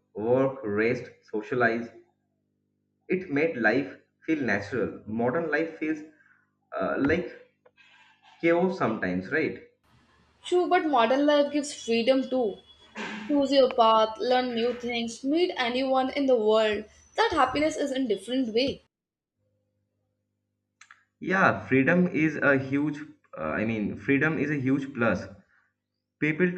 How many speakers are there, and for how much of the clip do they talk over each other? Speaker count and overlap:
2, no overlap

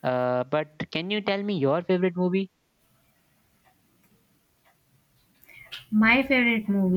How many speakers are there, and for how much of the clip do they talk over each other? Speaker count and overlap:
2, no overlap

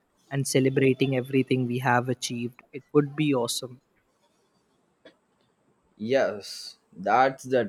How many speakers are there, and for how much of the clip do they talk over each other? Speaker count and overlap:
2, no overlap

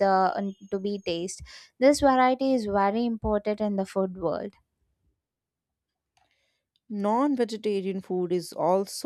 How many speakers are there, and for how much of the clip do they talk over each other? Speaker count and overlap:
2, no overlap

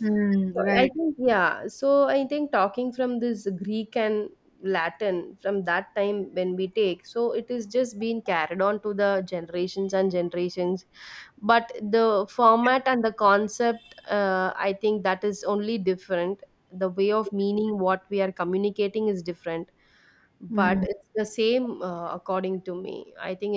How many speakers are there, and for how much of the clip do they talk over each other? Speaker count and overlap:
2, about 3%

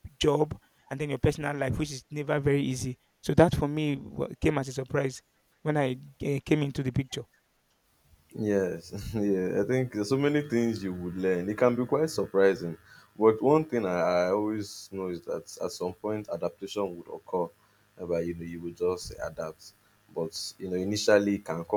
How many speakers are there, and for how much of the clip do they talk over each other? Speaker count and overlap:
2, no overlap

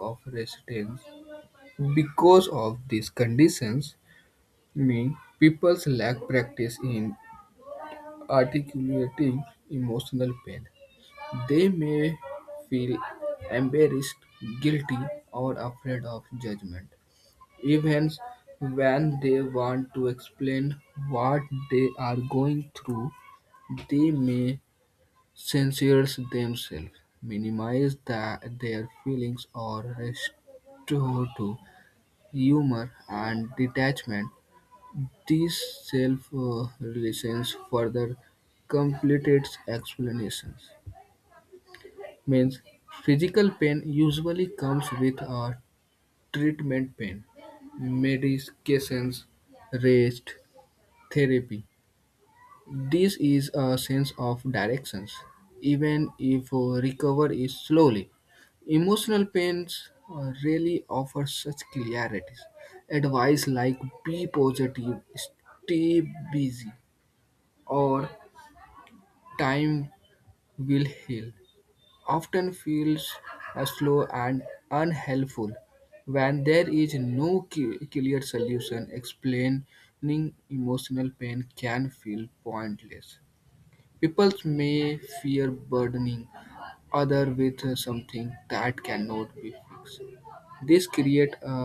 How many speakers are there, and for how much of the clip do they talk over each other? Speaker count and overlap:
1, no overlap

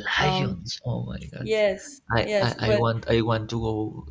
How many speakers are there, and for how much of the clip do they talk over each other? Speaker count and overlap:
2, about 30%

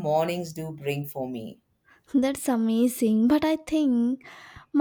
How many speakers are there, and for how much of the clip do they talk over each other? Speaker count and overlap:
2, no overlap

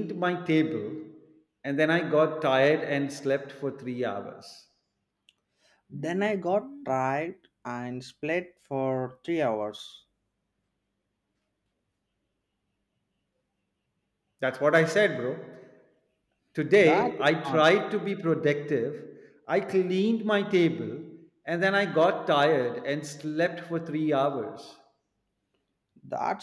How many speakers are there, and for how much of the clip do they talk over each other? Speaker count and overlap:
2, about 3%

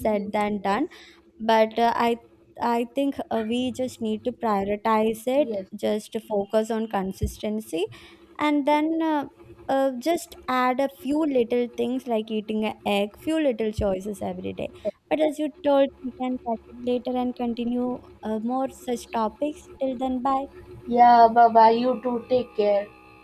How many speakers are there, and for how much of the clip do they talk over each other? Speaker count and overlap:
2, about 4%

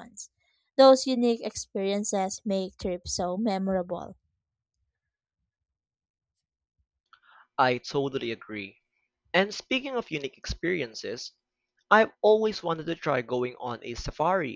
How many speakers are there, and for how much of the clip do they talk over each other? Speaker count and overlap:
2, no overlap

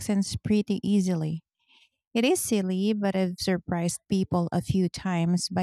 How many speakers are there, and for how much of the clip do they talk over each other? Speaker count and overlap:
1, no overlap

